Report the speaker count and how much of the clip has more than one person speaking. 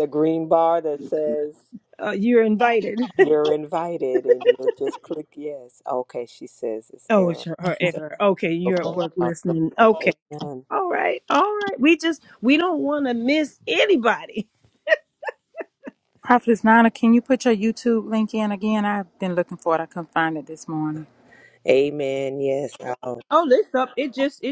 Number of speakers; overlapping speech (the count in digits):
3, about 4%